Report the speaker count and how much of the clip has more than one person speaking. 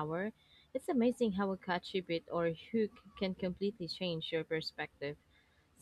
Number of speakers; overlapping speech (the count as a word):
one, no overlap